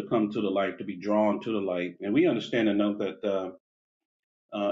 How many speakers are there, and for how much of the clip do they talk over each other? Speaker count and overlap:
1, no overlap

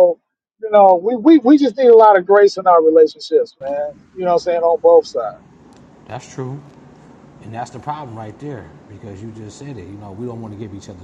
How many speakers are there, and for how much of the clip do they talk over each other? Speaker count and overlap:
2, no overlap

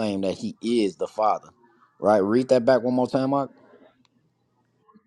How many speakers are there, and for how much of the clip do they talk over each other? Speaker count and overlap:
1, no overlap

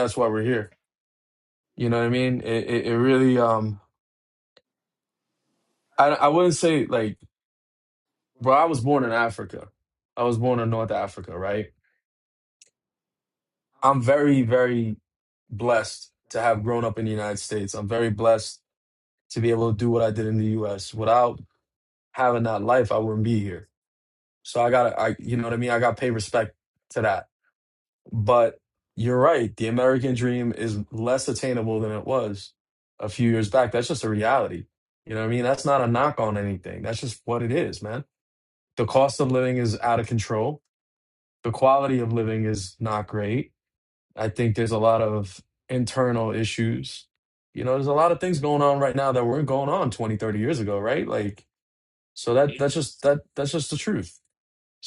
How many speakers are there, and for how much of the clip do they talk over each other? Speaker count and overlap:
1, no overlap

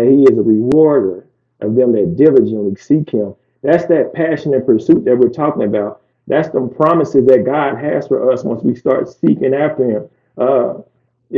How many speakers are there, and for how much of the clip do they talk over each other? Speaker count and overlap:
1, no overlap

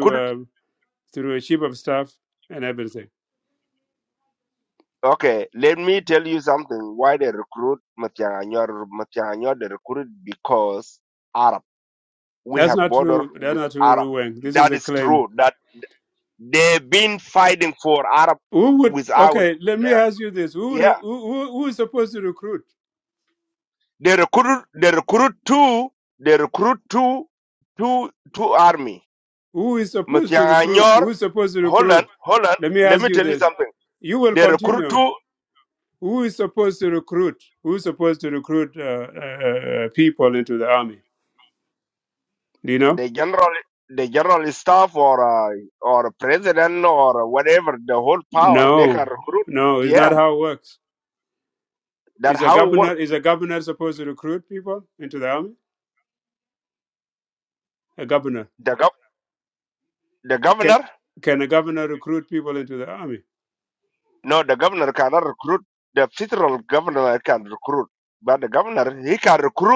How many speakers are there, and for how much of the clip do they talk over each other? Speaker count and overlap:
2, about 12%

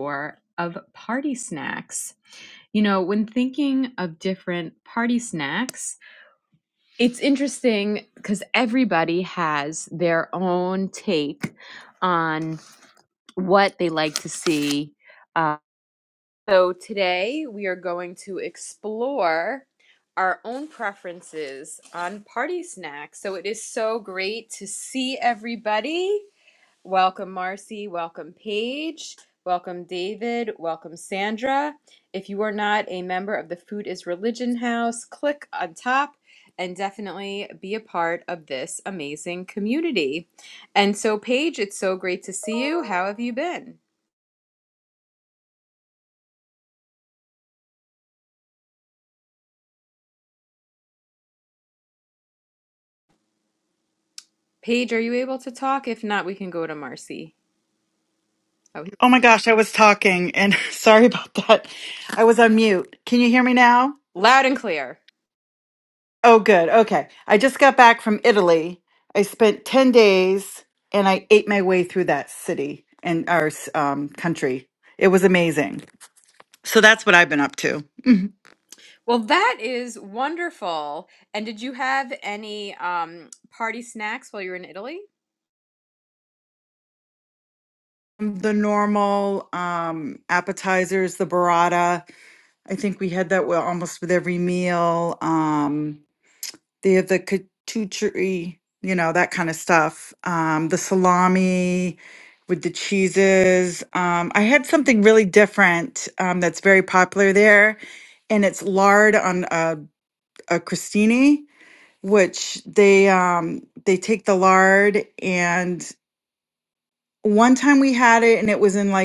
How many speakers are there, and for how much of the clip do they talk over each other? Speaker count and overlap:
2, no overlap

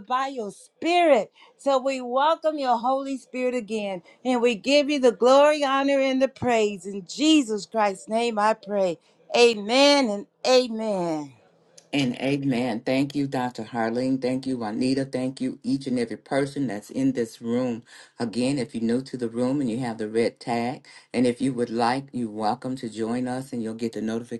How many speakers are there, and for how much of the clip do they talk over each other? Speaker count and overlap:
2, no overlap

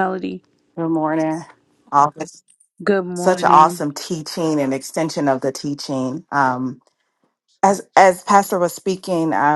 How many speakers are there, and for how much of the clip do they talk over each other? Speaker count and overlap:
2, about 6%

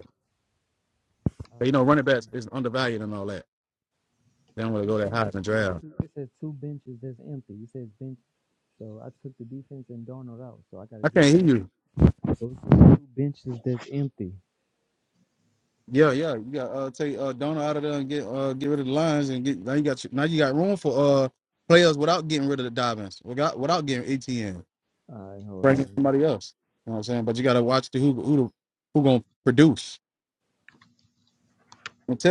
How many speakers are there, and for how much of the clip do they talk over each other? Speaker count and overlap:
2, about 5%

